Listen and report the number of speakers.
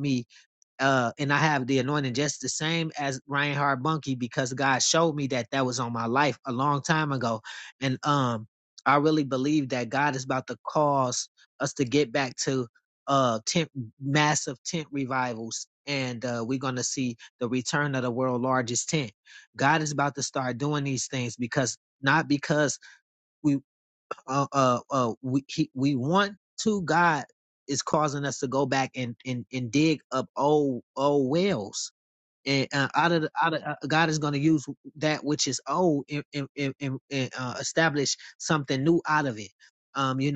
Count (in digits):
1